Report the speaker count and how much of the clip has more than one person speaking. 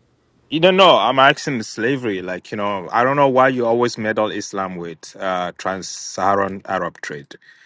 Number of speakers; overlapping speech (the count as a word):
one, no overlap